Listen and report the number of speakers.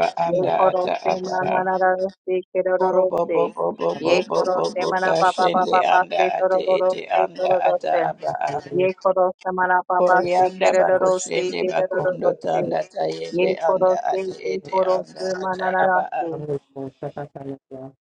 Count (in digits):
3